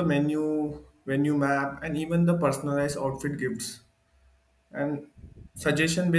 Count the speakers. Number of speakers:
one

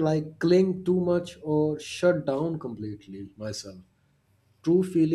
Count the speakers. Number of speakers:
one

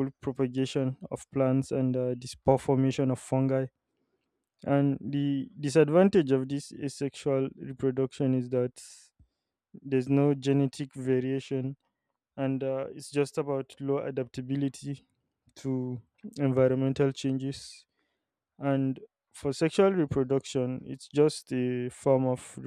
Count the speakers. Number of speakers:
one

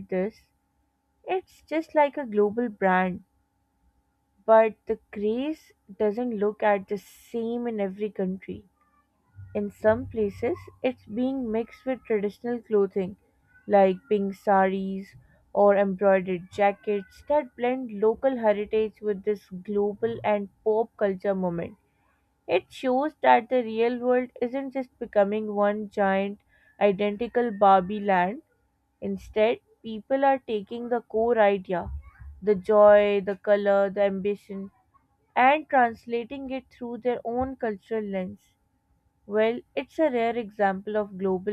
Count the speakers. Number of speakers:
one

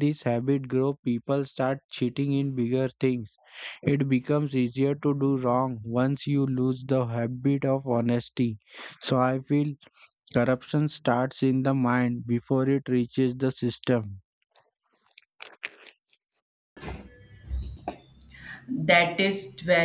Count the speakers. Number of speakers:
two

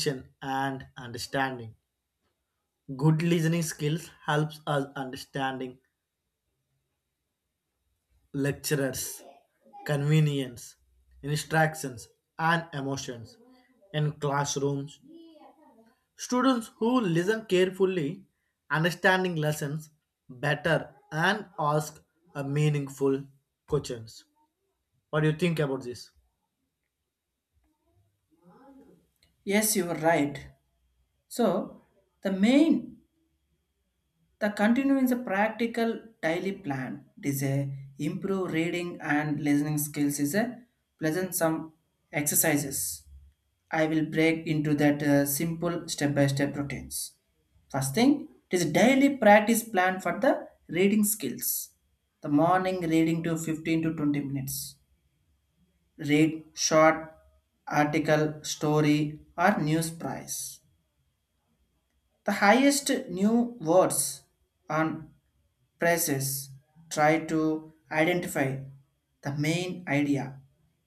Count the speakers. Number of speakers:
two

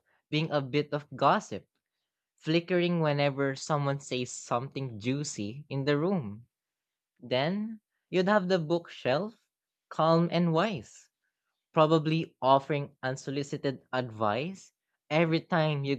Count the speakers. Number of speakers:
one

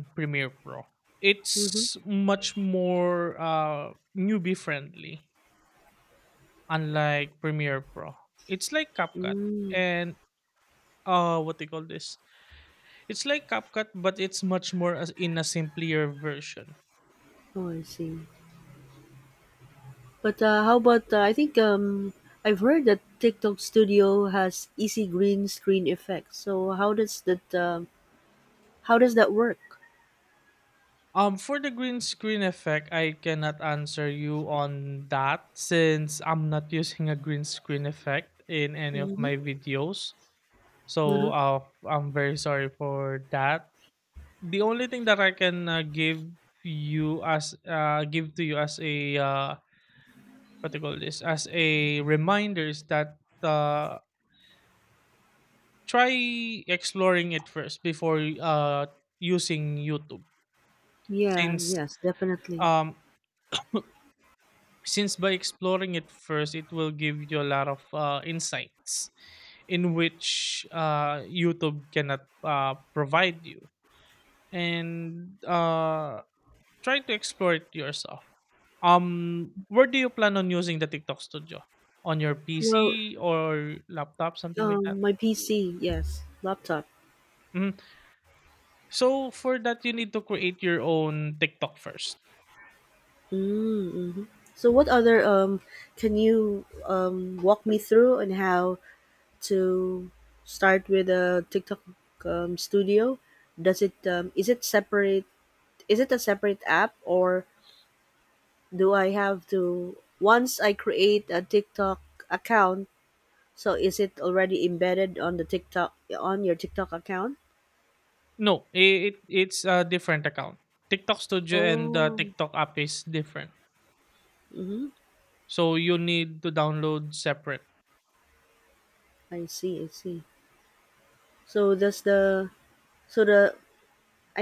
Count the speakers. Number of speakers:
two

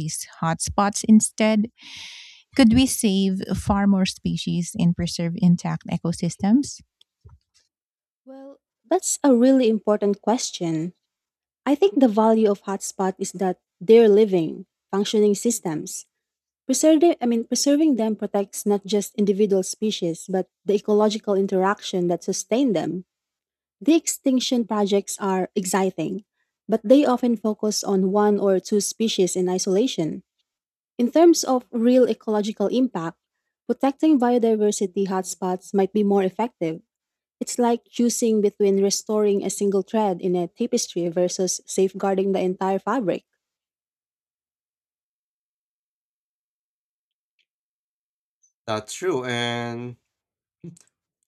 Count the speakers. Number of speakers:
three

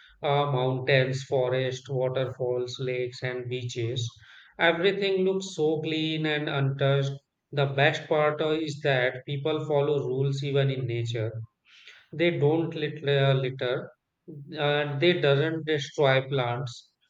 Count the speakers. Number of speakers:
one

